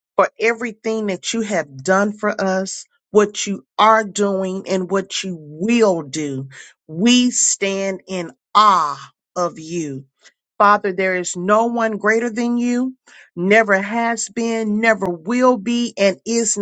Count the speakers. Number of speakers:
1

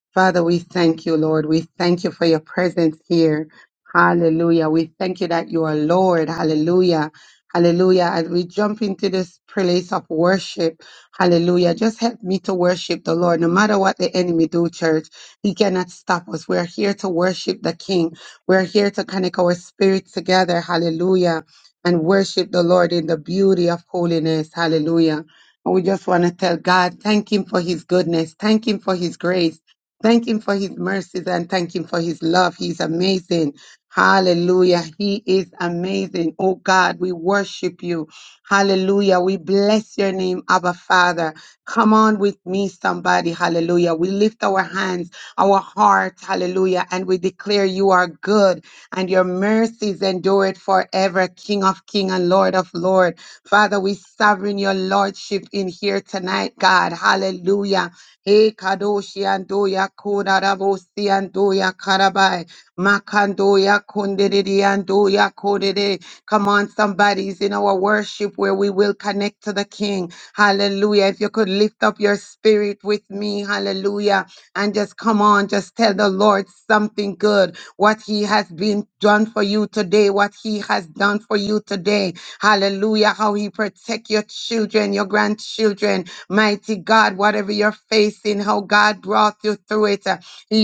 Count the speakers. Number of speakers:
1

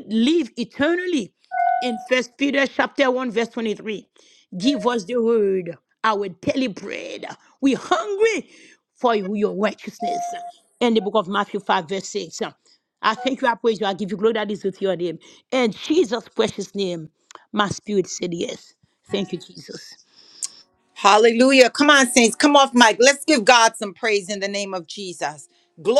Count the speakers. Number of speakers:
2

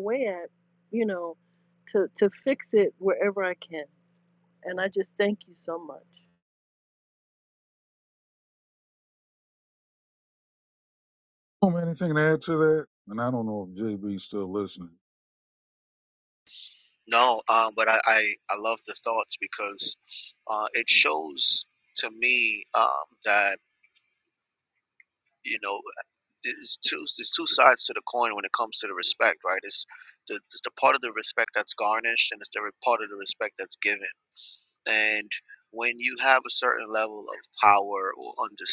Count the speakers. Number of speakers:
3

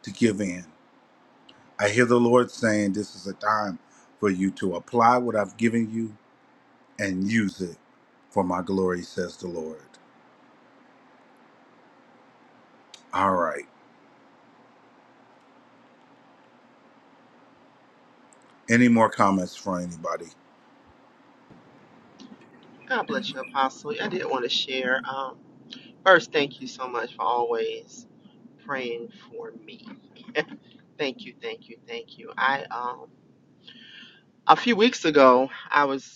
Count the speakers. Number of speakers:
2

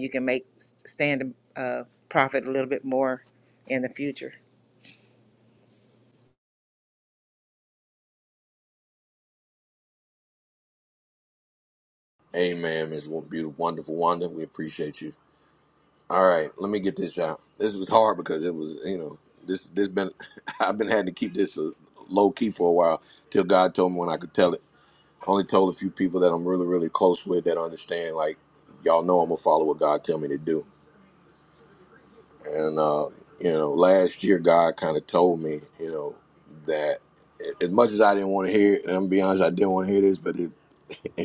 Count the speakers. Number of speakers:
2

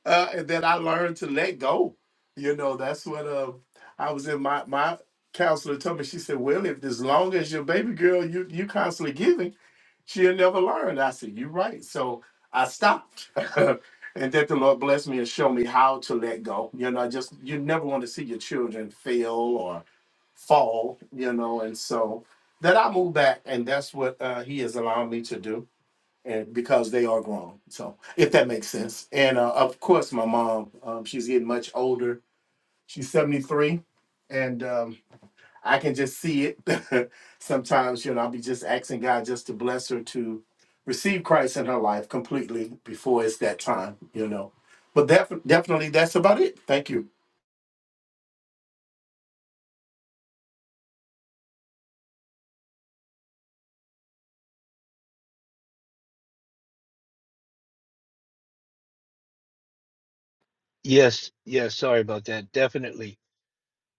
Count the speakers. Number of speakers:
2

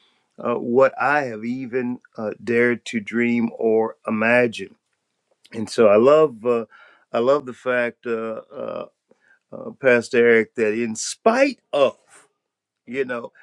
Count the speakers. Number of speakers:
1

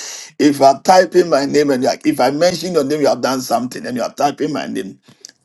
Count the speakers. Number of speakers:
1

